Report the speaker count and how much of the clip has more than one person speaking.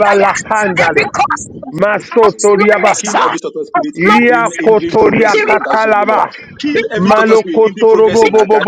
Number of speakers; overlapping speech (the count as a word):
three, about 76%